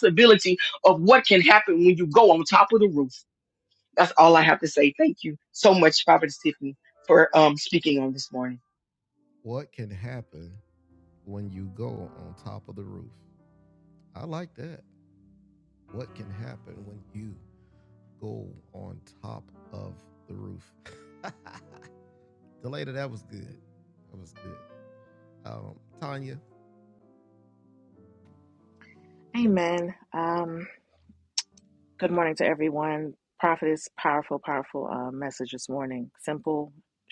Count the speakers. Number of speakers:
three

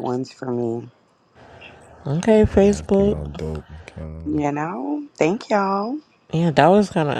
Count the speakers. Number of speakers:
three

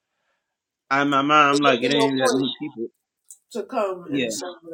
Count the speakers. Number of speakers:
two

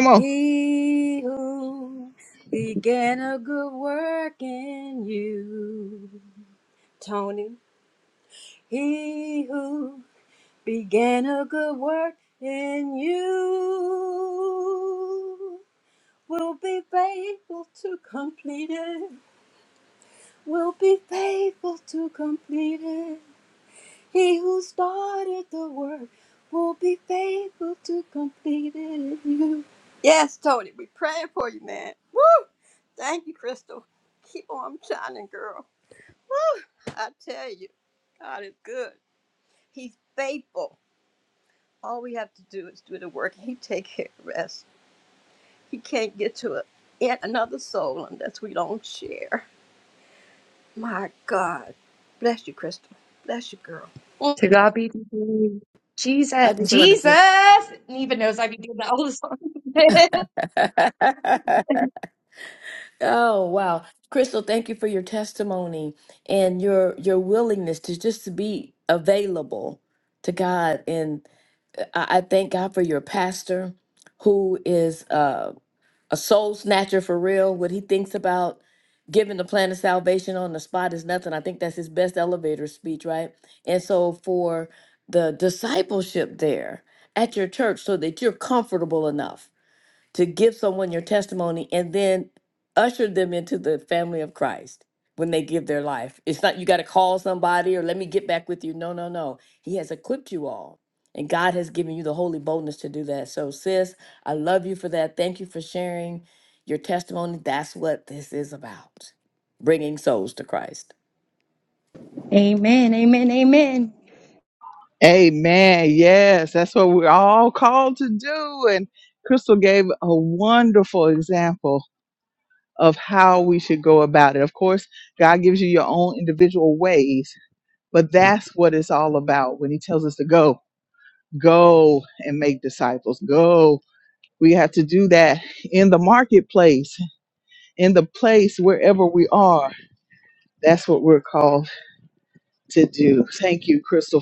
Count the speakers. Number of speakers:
four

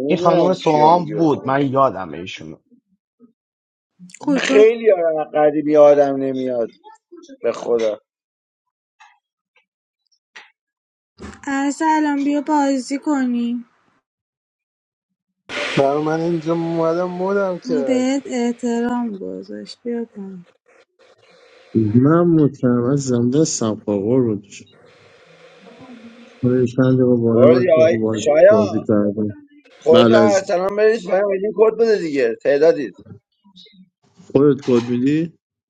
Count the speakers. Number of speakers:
five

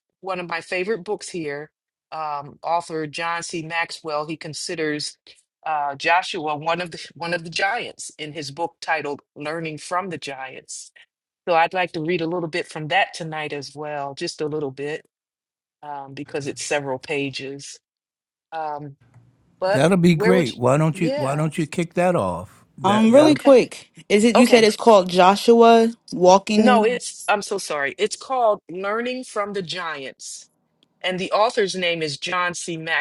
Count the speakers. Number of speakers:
three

